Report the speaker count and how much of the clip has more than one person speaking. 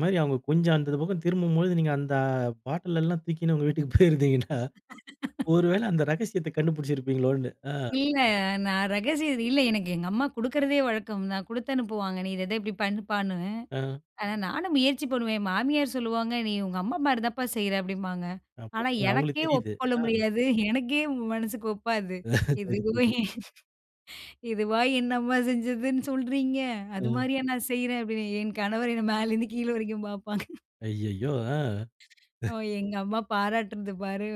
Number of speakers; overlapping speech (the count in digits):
2, about 6%